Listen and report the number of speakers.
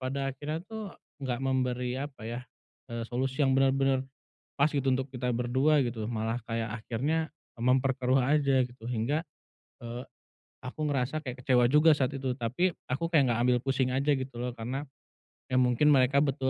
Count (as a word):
one